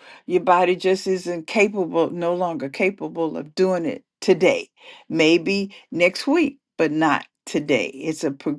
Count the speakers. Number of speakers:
1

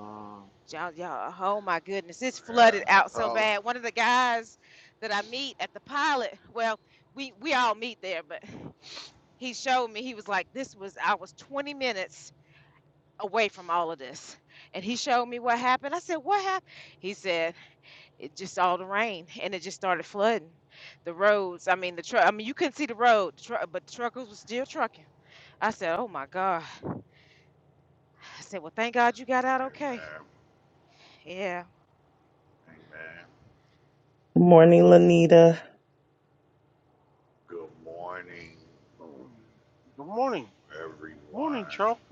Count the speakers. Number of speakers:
4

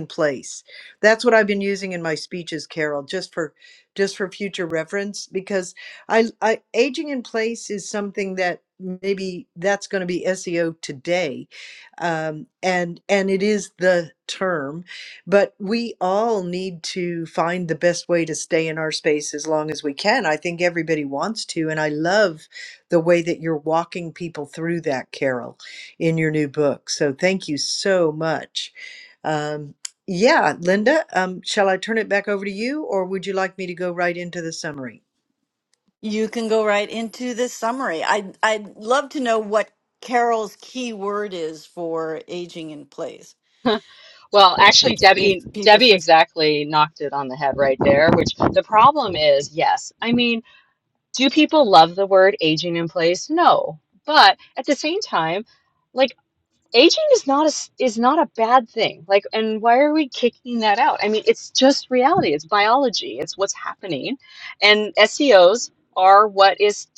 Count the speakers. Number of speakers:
3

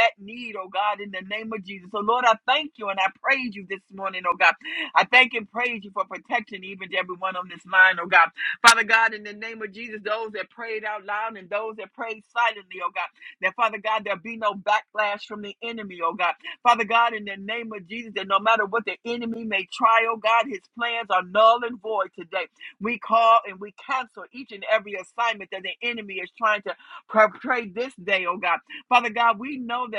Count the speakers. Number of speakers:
1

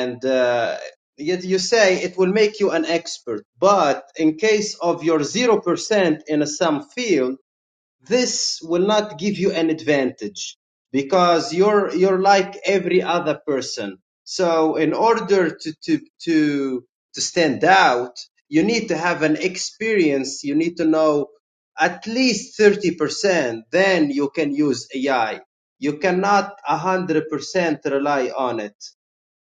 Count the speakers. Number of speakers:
1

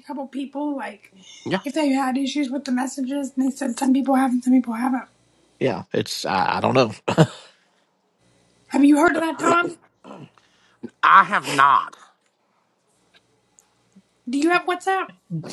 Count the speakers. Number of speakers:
3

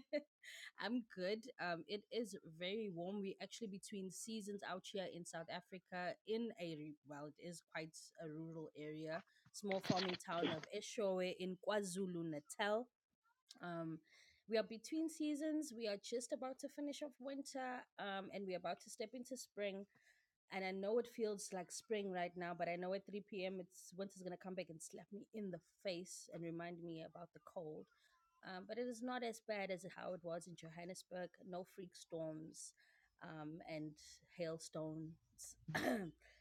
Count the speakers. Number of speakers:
1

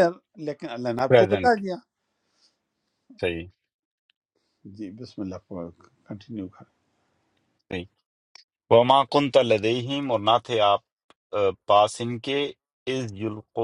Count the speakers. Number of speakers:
2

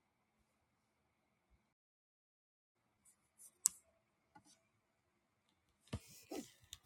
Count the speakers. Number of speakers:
0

